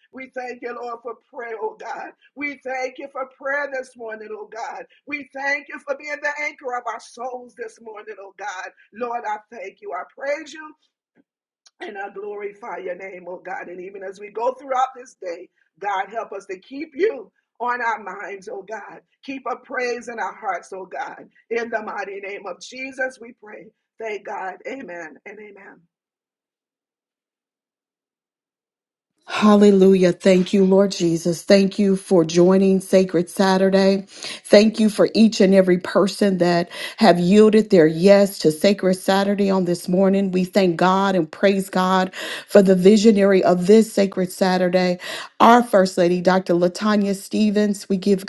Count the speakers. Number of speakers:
2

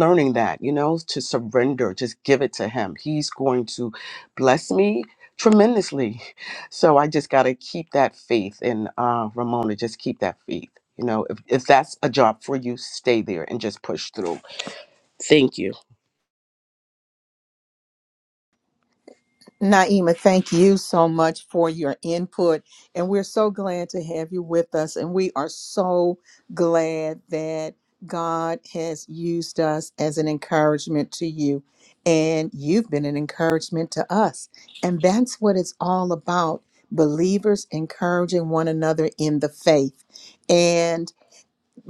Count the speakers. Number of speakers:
2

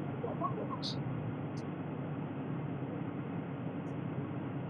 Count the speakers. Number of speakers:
0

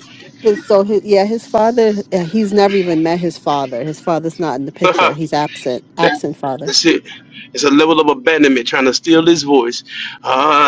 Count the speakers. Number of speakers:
2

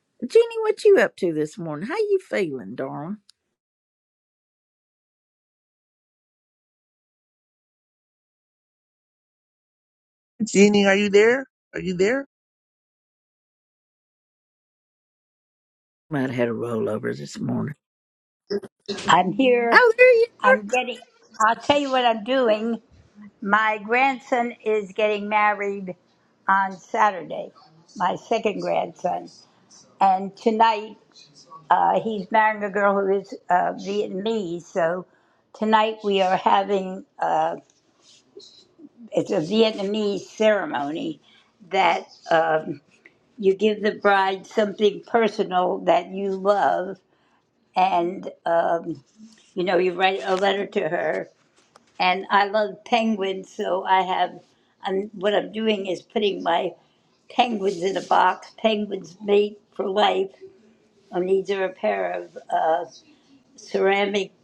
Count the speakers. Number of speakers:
3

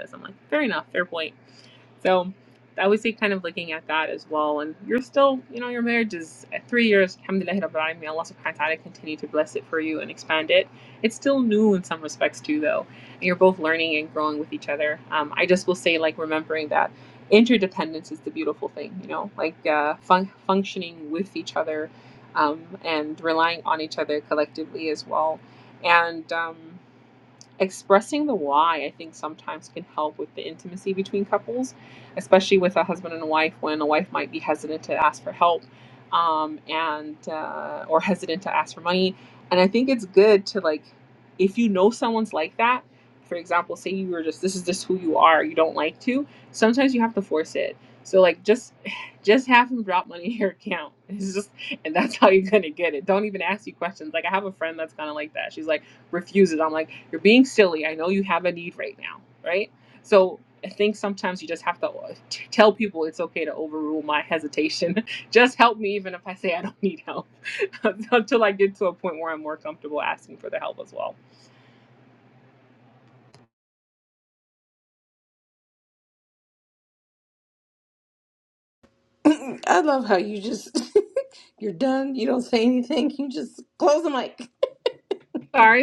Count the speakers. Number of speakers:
2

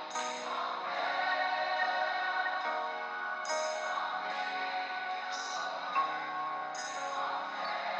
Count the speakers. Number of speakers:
0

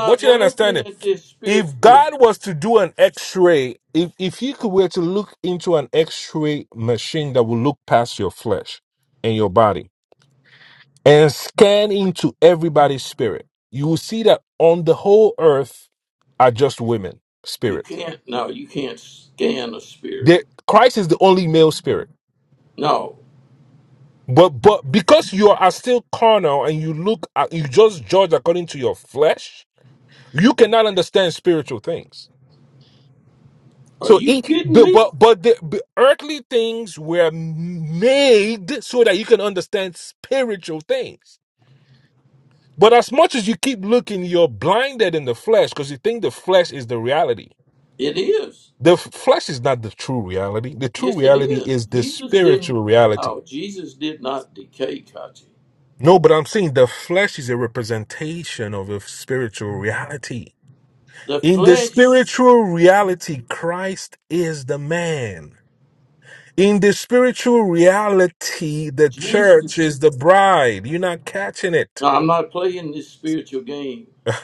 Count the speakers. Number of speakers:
2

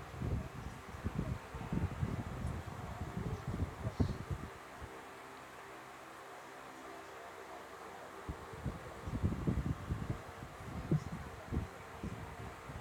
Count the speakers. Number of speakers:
0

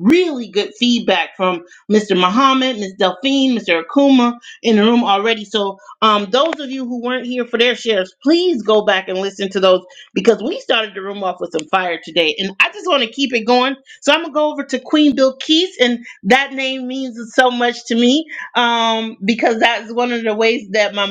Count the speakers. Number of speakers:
1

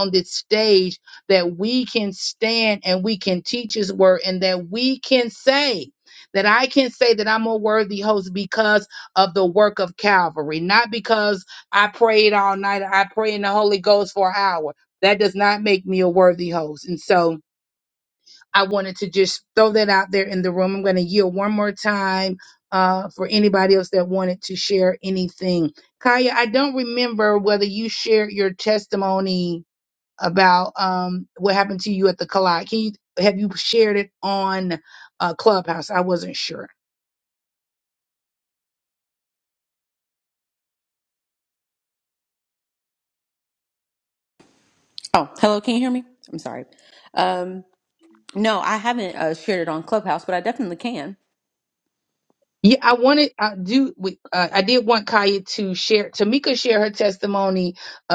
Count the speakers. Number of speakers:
2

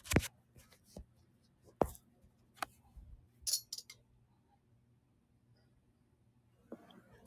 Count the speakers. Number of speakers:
0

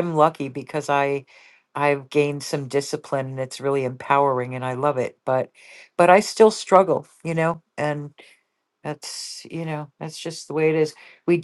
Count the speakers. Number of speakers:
1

